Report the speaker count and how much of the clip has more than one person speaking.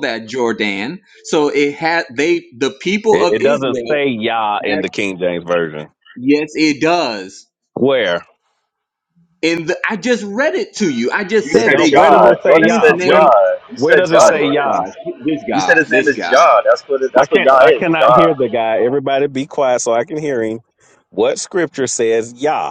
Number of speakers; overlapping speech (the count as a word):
three, about 27%